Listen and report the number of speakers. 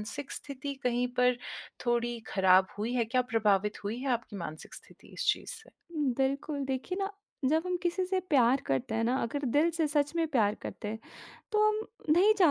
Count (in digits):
2